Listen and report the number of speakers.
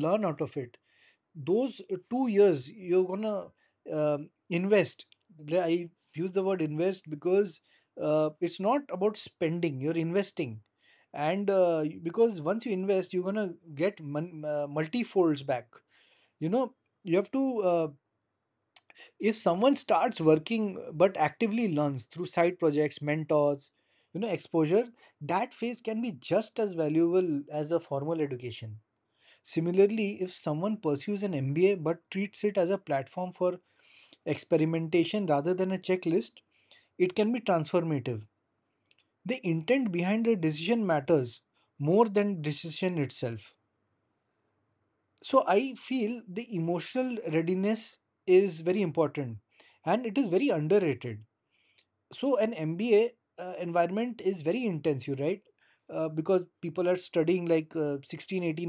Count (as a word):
one